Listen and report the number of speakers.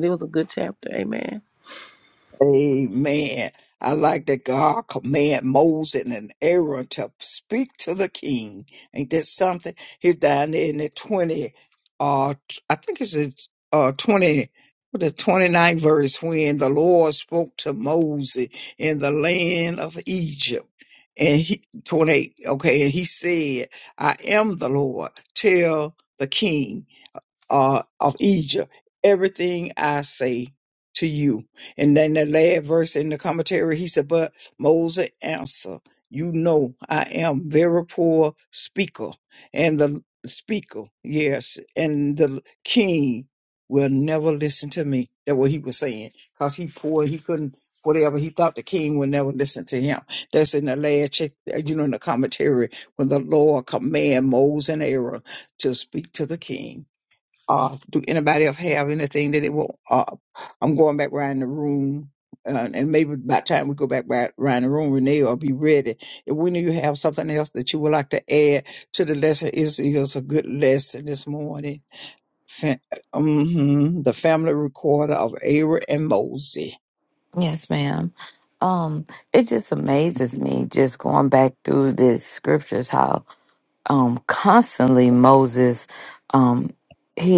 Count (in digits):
3